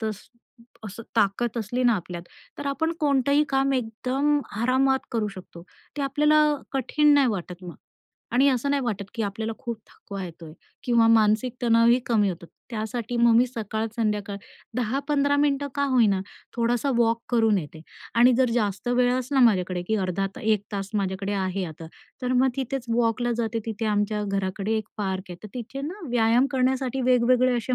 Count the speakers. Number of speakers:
1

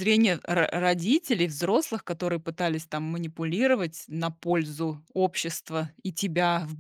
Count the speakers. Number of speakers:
1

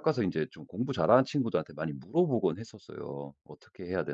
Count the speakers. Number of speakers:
1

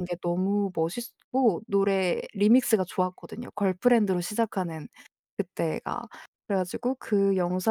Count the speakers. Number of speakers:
1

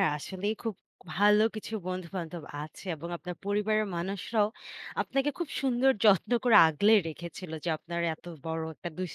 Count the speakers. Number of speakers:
1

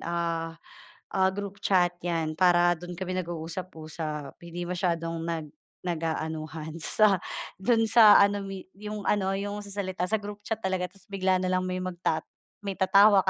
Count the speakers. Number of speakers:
1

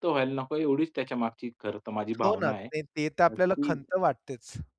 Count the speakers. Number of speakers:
2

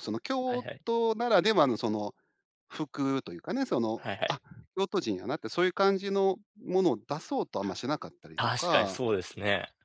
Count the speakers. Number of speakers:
2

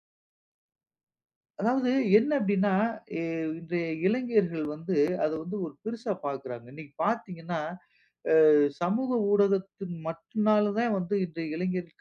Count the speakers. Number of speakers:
1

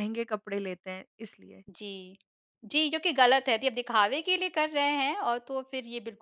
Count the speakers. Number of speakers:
2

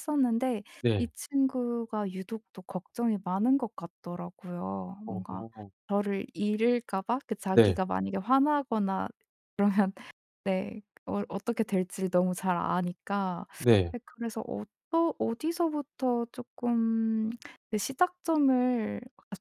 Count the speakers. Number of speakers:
2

